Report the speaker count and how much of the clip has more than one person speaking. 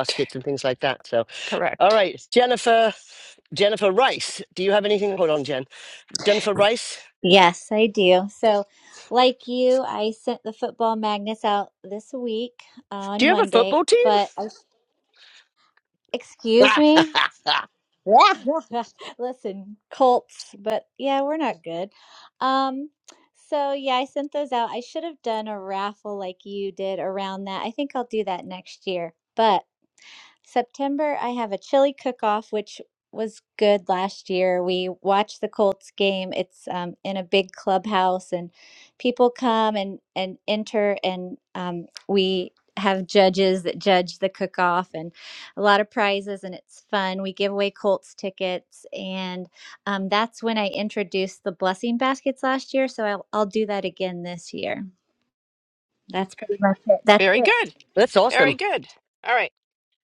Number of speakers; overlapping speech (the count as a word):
three, about 3%